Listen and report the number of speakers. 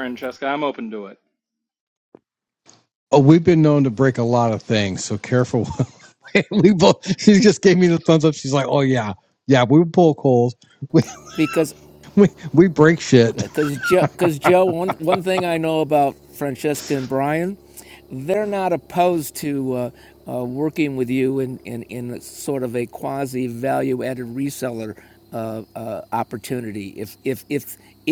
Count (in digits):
3